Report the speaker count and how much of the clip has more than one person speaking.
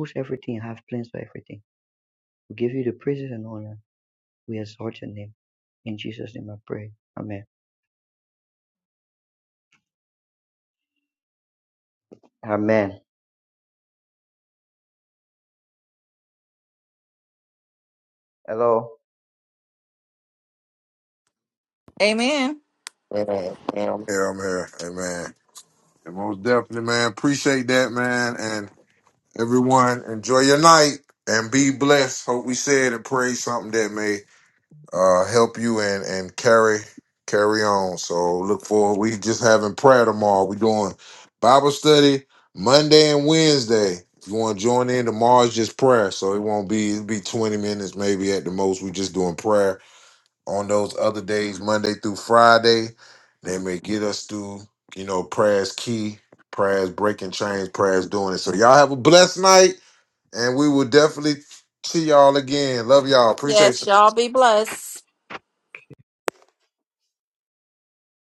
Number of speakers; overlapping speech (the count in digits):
3, about 1%